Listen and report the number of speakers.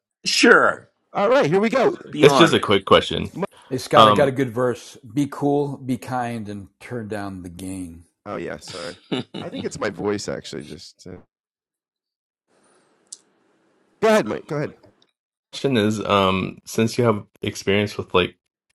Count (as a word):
four